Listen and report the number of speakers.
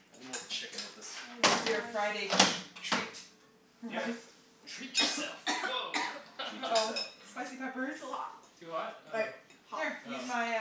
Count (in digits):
4